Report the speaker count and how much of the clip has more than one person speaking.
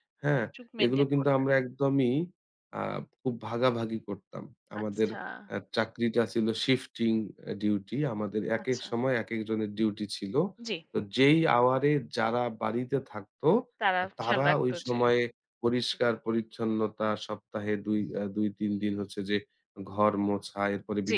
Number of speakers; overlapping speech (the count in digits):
2, about 13%